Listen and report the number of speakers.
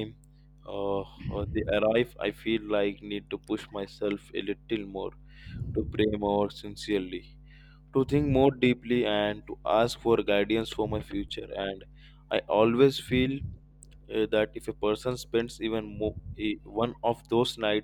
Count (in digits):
1